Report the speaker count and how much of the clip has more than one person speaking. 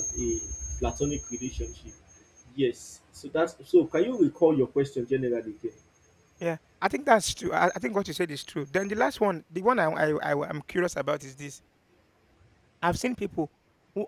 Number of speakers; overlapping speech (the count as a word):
two, no overlap